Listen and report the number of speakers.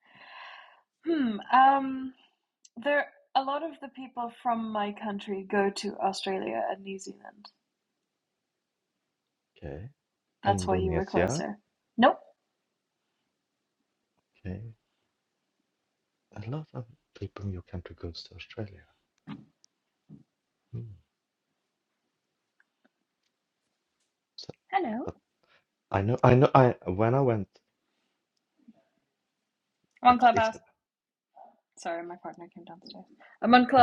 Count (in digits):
2